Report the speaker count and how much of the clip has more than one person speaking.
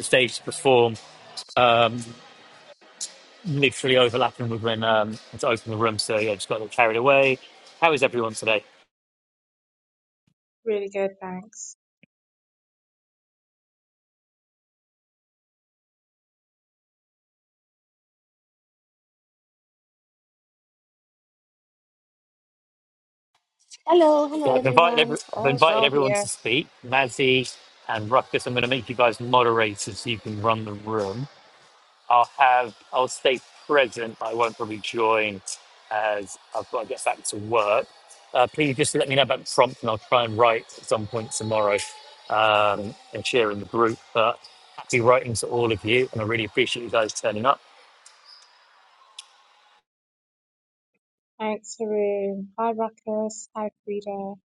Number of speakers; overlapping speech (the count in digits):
3, about 3%